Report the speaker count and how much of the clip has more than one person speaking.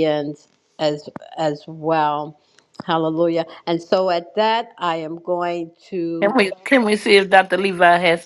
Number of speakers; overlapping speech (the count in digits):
2, about 2%